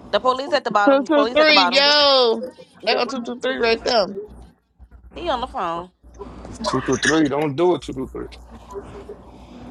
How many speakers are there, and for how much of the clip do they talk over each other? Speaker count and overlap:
3, about 10%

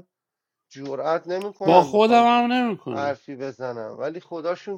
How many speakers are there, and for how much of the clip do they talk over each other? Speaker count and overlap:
2, about 17%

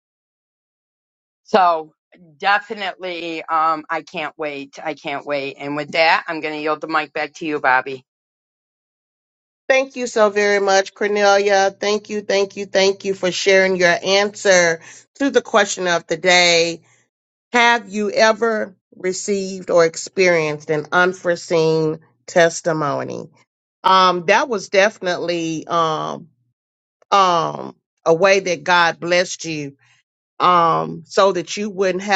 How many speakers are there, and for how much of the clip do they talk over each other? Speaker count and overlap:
2, no overlap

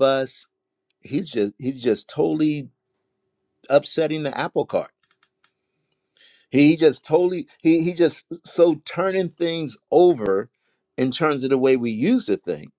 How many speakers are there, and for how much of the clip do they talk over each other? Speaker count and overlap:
1, no overlap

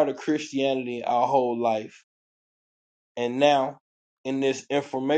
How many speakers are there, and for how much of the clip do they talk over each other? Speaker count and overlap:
1, no overlap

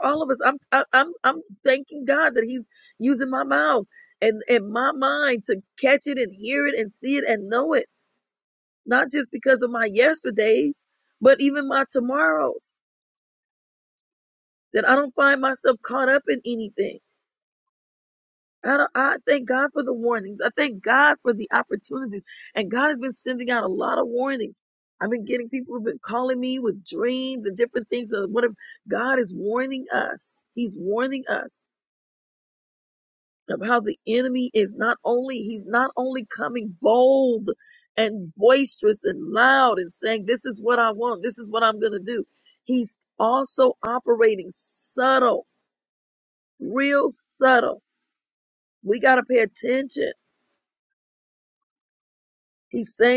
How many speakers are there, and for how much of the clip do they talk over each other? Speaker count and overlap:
1, no overlap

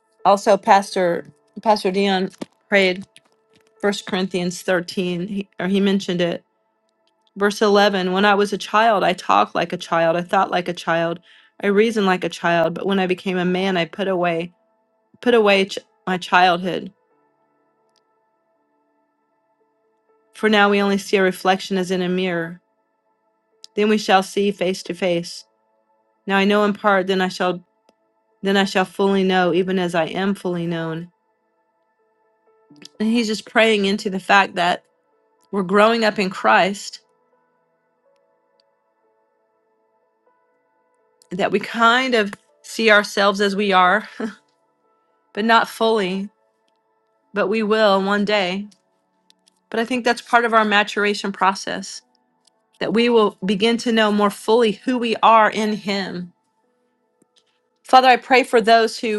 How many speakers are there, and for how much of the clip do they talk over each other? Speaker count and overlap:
1, no overlap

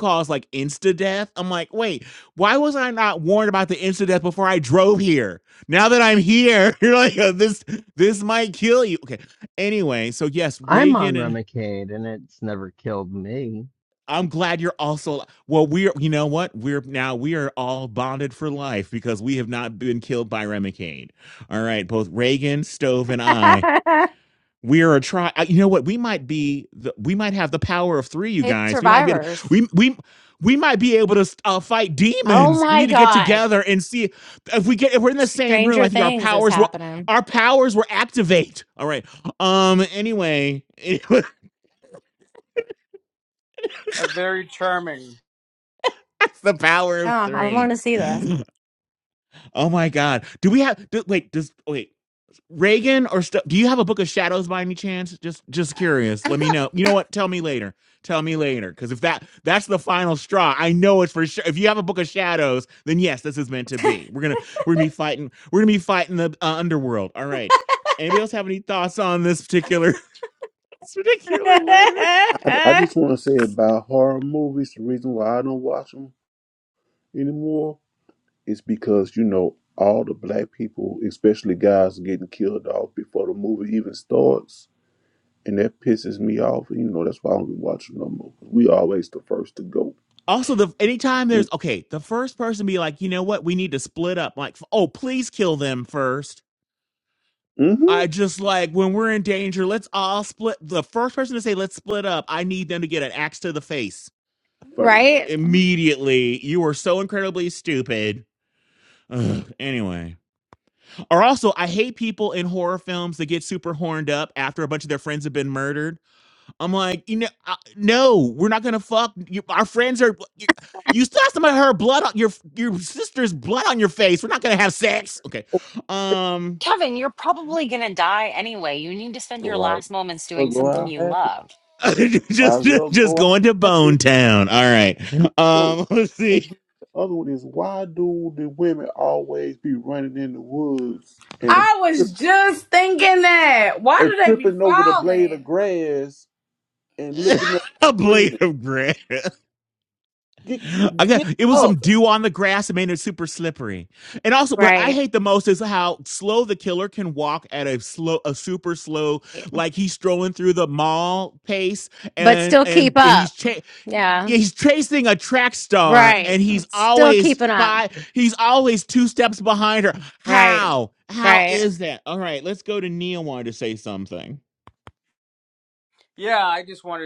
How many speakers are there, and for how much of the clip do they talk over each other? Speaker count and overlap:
7, about 8%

